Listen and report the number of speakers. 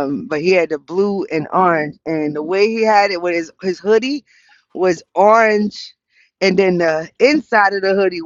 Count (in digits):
1